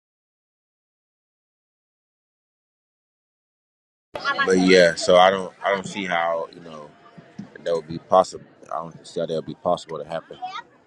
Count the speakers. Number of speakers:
one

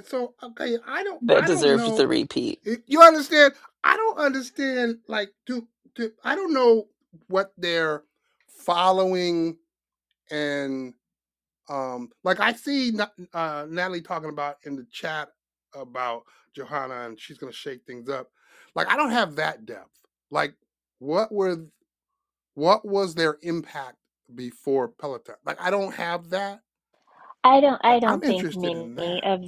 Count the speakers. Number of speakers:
three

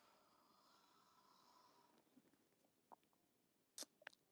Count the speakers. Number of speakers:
zero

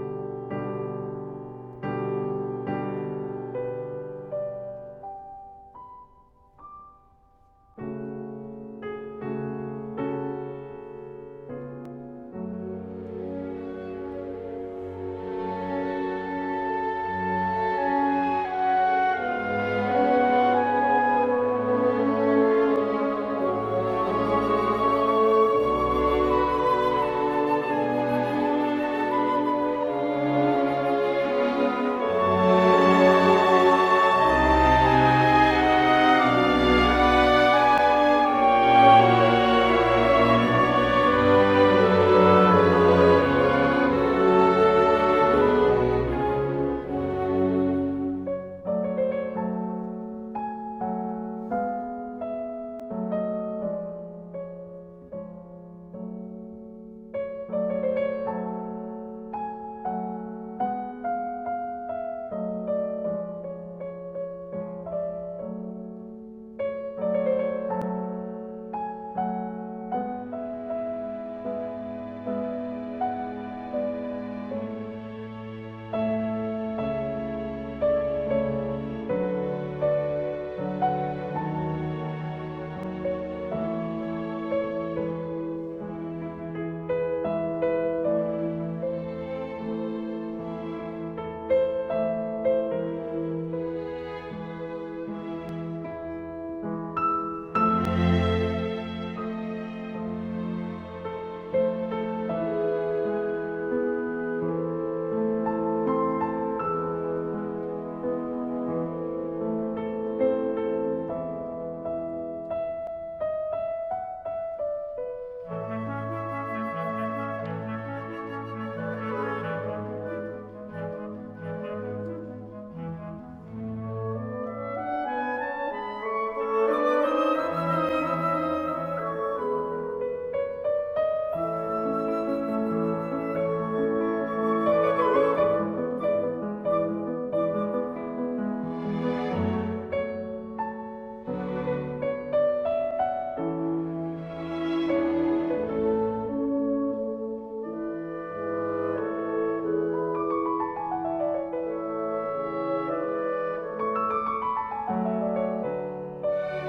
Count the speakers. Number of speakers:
zero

